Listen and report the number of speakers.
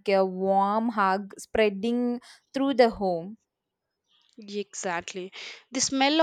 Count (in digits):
2